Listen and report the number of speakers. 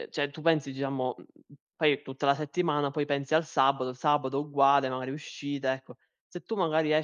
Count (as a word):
one